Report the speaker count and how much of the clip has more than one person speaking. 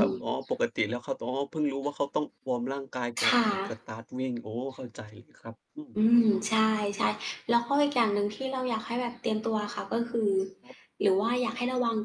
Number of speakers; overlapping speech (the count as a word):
two, about 3%